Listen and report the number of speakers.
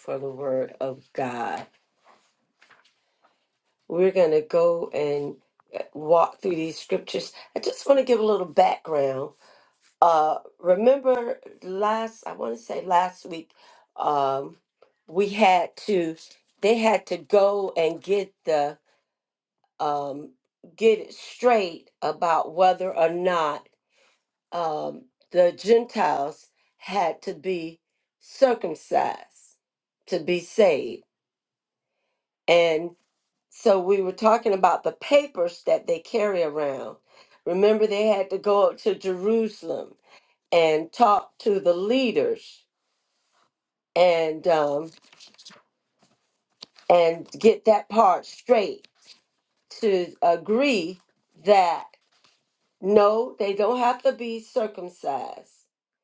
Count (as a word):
one